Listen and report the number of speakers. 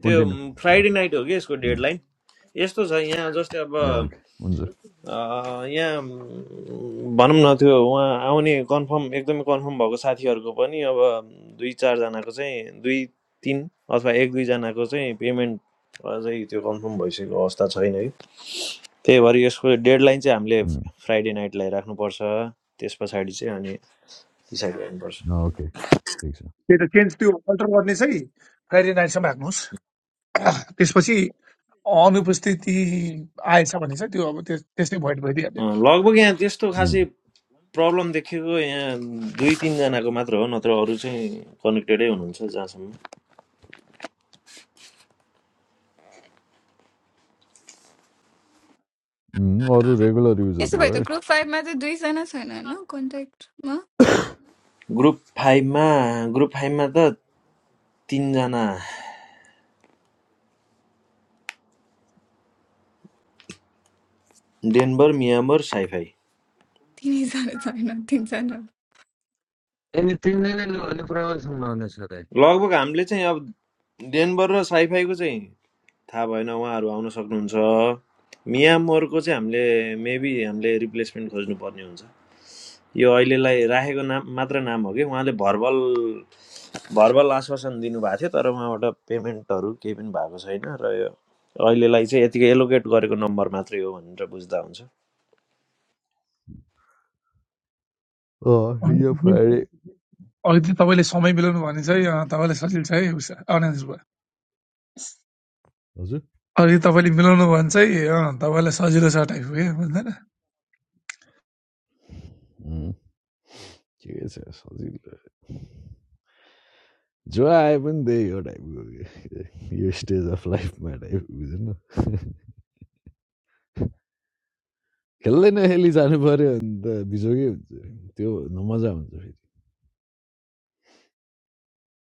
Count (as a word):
five